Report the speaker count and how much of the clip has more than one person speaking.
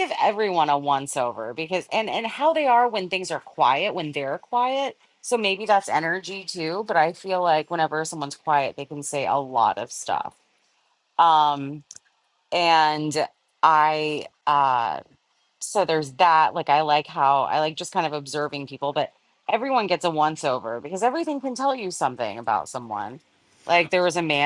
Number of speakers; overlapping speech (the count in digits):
1, no overlap